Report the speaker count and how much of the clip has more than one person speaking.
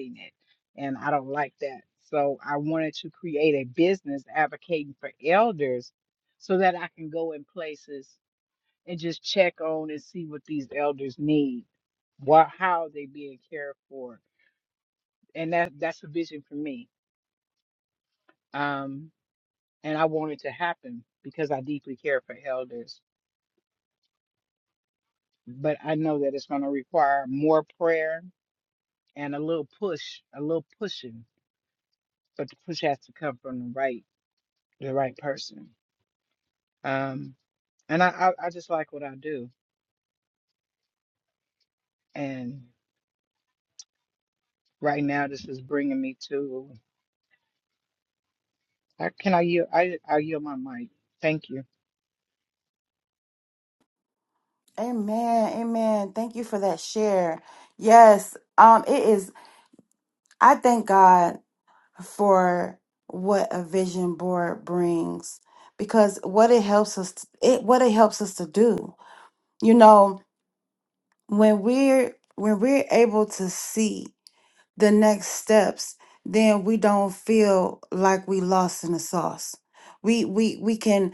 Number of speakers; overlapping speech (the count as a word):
two, no overlap